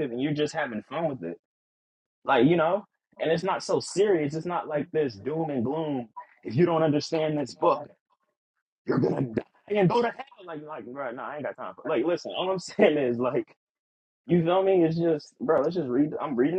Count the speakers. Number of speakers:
one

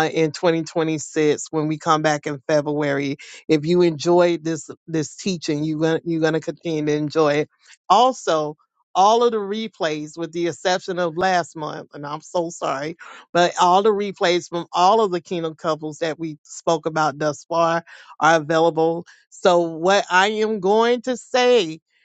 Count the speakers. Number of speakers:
one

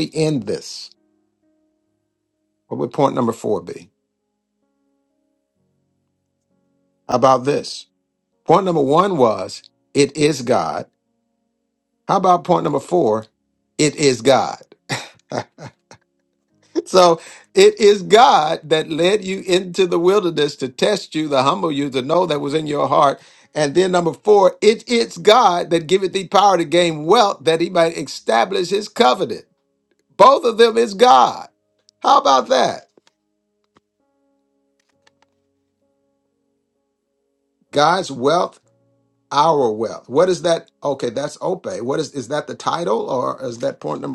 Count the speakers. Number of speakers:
one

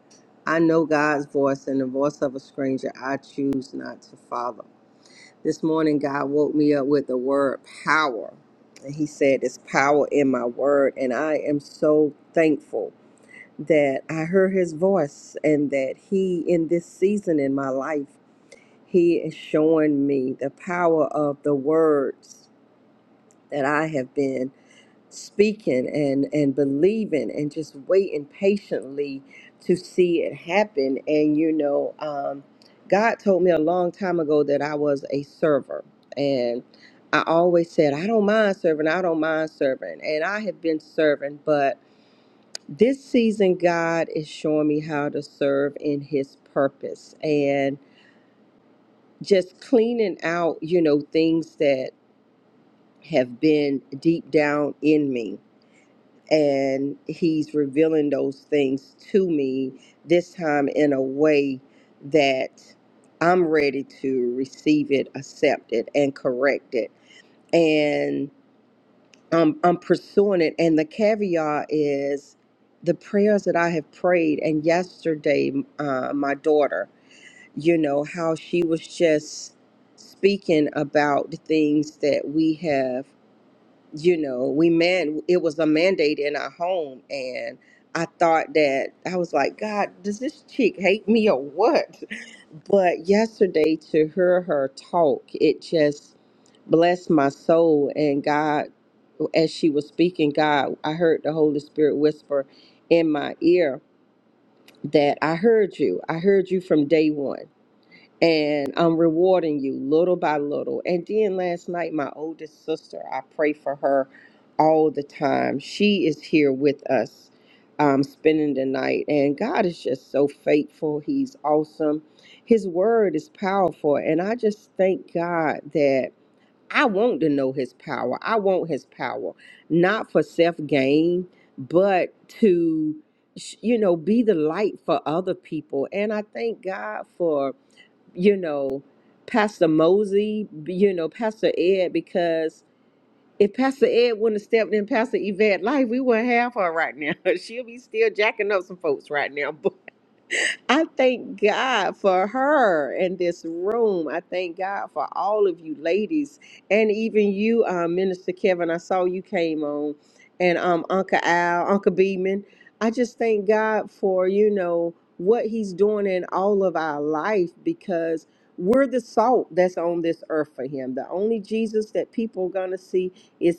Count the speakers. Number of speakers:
one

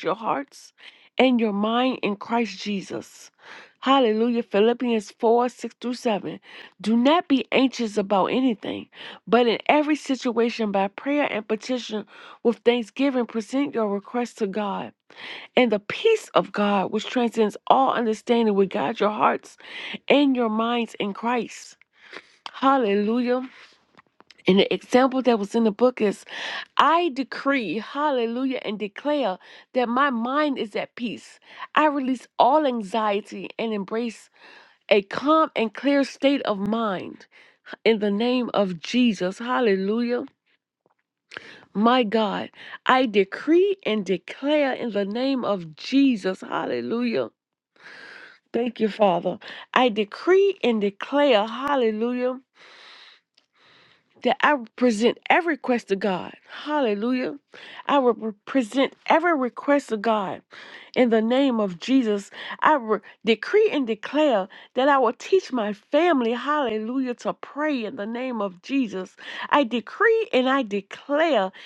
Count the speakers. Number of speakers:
one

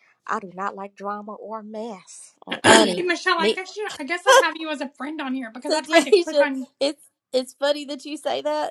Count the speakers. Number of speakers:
three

